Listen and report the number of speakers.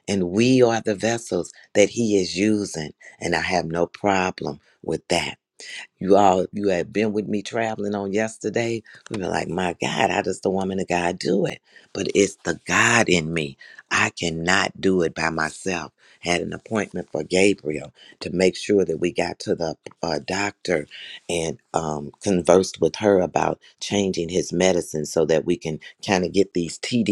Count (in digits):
1